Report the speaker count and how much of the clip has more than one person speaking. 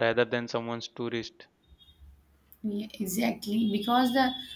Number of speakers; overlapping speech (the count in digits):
2, no overlap